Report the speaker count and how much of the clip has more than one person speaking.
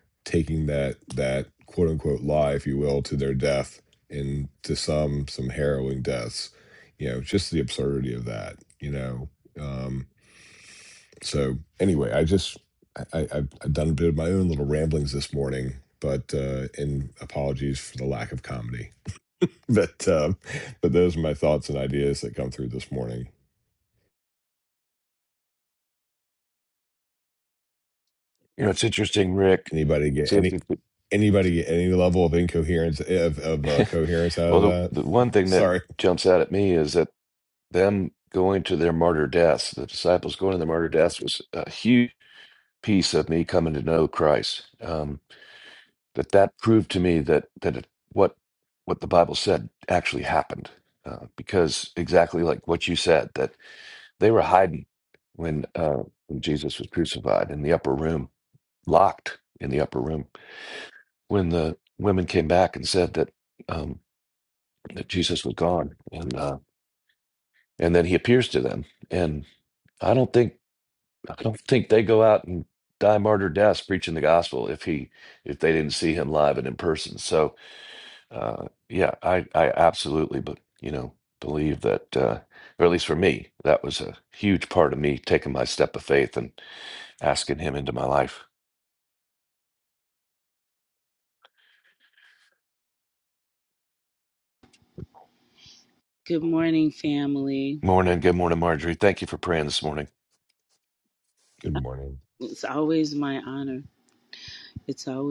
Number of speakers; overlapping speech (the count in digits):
3, about 1%